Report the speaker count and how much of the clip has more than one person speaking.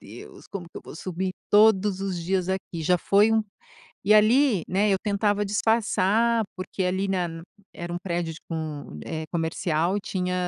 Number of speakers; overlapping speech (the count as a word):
one, no overlap